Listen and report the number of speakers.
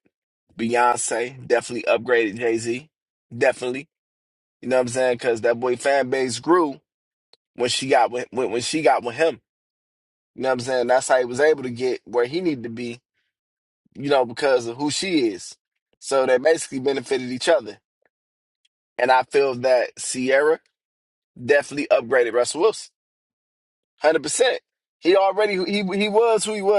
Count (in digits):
1